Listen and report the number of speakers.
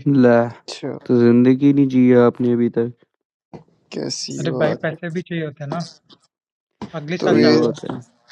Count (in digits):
3